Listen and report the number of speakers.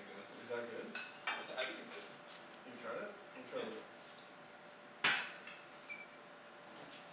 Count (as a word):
two